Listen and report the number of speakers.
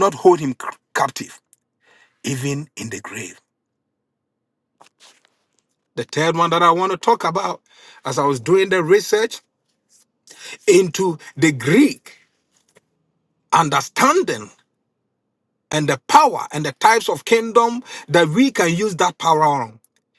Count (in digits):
1